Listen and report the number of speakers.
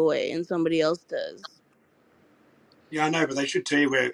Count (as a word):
two